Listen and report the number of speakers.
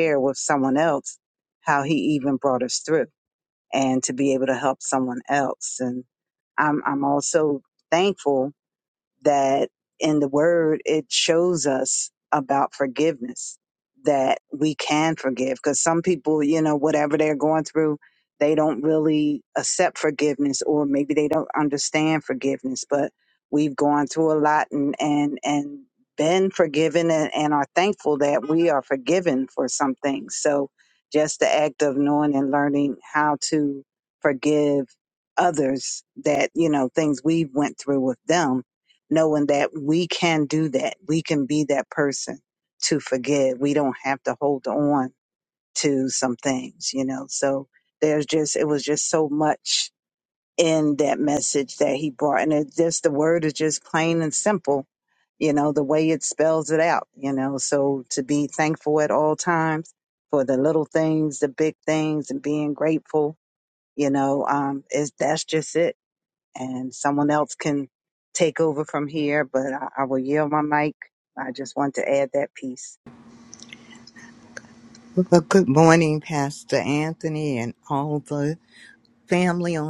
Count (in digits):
2